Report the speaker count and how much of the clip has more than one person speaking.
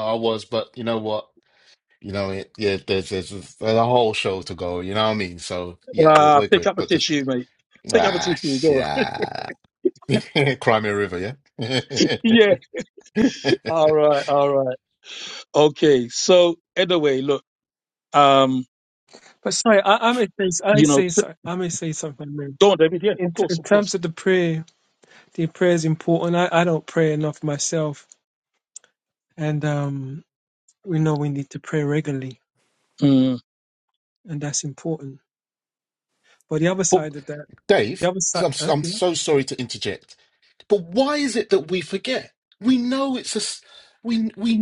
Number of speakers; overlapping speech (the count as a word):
three, about 10%